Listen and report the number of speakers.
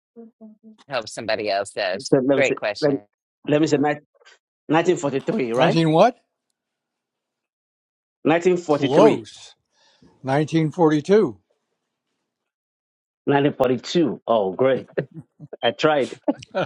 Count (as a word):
three